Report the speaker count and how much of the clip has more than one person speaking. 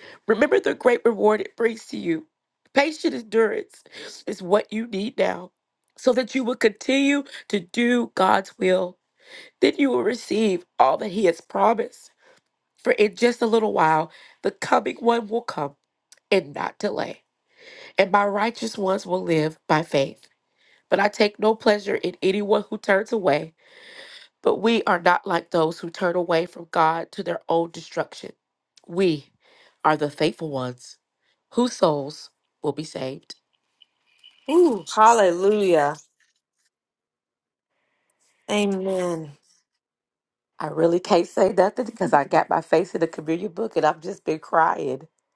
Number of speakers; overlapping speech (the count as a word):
two, no overlap